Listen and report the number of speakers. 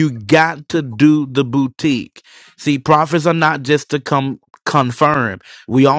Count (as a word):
one